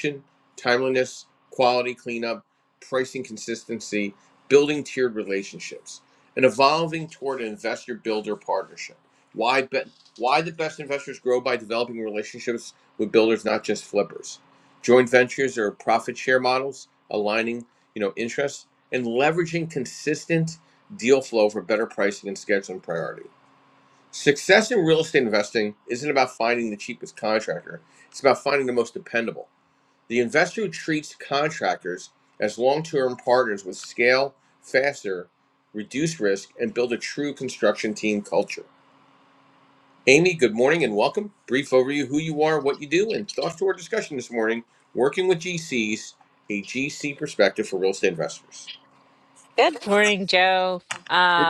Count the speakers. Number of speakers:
2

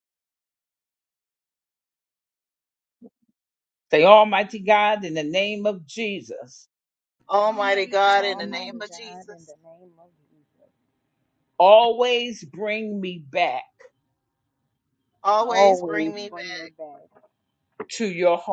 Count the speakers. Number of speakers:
3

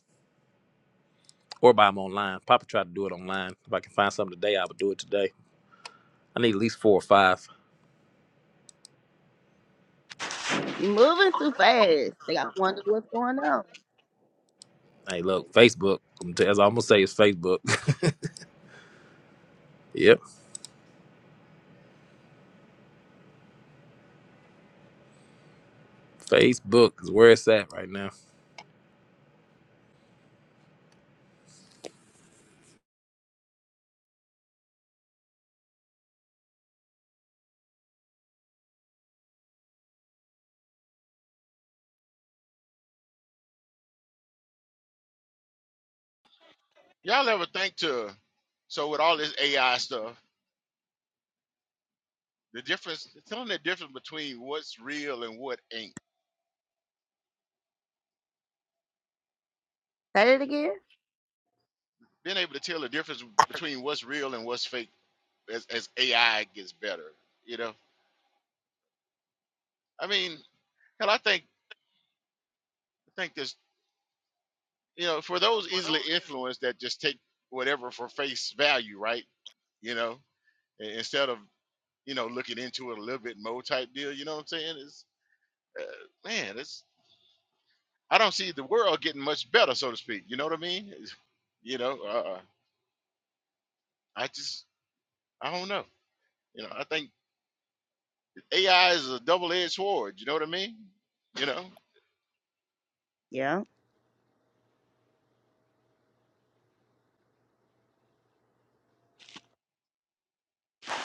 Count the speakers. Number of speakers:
3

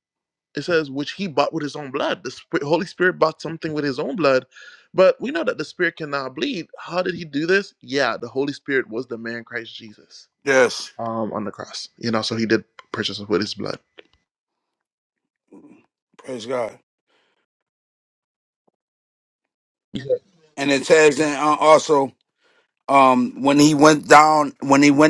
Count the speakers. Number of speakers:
2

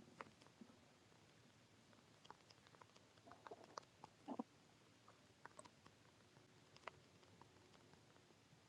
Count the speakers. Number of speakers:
0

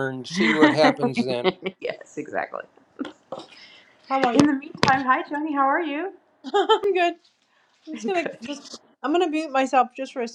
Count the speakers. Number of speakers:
3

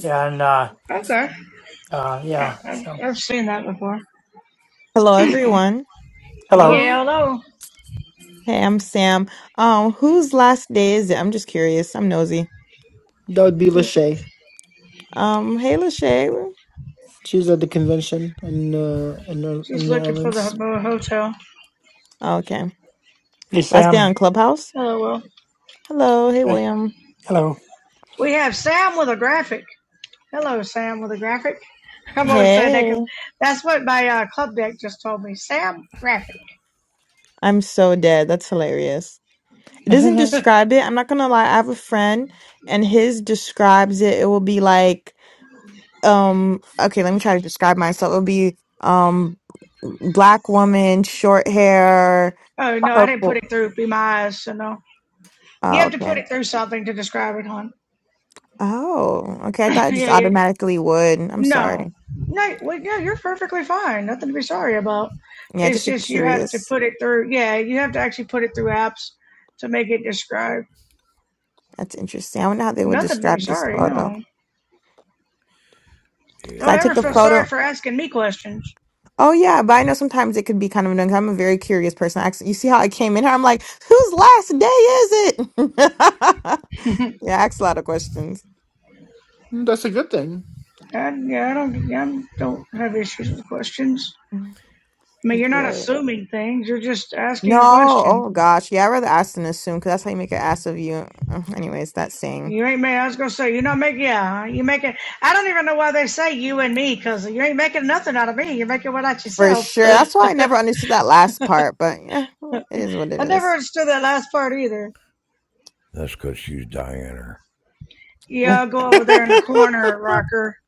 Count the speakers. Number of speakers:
5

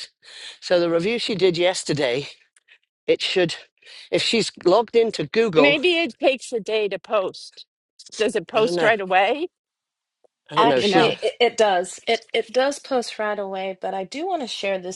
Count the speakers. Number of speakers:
3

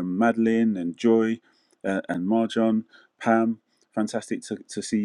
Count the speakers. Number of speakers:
1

